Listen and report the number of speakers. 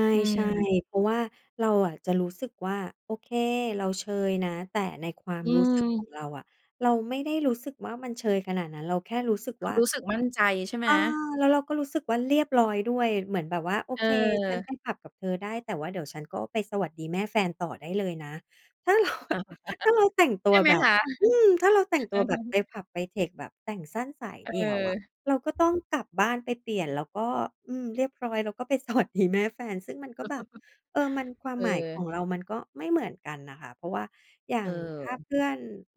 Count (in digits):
2